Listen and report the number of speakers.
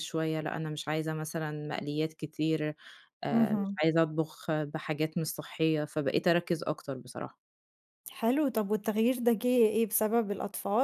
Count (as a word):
two